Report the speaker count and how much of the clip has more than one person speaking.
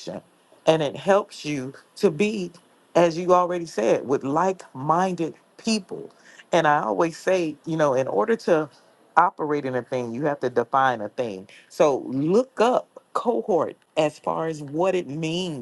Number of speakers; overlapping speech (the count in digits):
1, no overlap